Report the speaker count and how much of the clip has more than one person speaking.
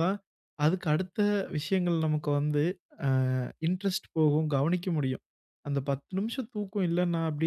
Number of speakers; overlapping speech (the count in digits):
1, no overlap